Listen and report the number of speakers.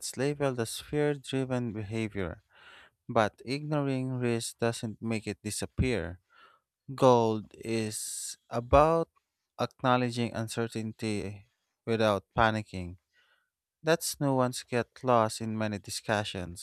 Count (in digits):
1